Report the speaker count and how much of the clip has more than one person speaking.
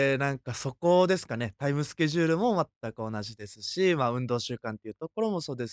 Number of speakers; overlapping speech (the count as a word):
one, no overlap